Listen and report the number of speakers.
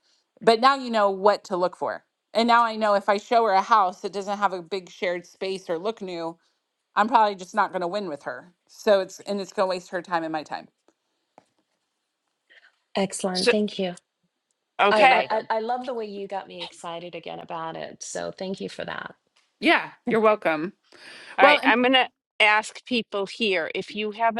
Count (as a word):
three